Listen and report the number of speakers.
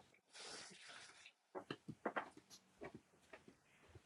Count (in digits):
0